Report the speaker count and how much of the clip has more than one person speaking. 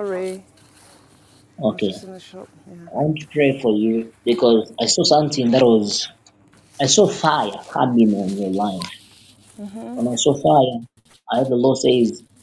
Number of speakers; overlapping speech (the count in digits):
2, about 2%